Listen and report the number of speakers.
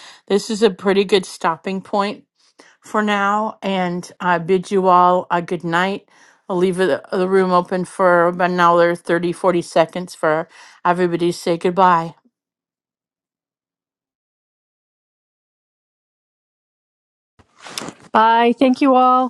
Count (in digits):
2